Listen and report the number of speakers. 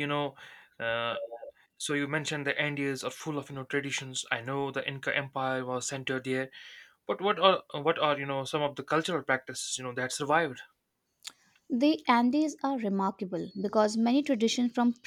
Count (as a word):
two